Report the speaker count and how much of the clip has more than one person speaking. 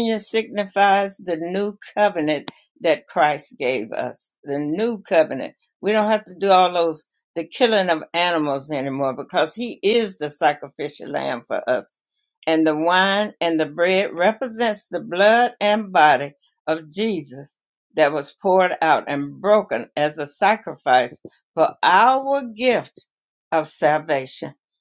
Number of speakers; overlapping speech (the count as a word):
one, no overlap